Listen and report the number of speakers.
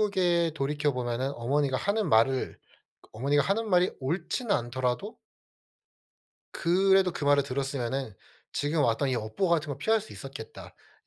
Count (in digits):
1